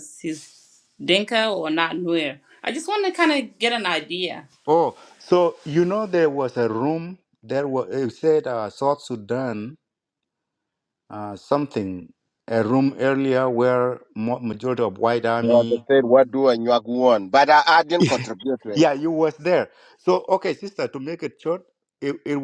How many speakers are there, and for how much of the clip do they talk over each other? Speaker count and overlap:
3, about 2%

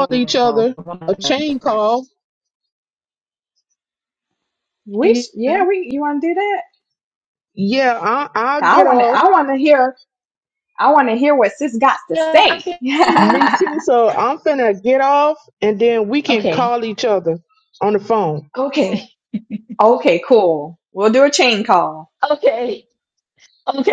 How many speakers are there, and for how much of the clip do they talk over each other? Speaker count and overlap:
3, about 10%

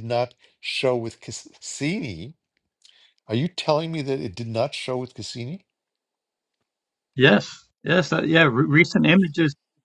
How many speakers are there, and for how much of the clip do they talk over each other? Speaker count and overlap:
2, no overlap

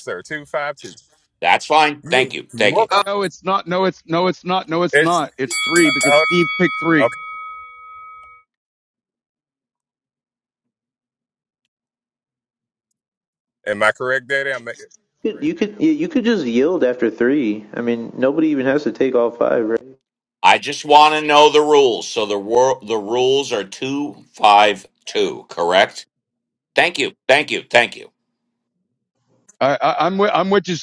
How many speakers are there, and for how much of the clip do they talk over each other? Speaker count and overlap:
4, about 5%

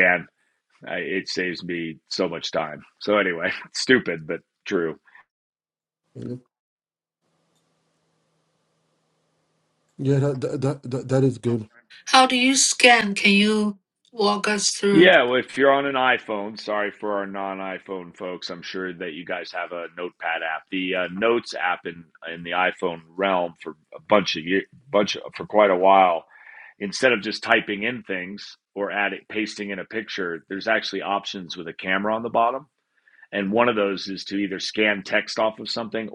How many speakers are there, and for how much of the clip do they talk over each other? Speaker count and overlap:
3, under 1%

